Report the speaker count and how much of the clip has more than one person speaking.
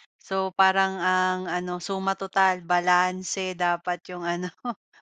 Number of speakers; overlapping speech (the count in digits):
1, no overlap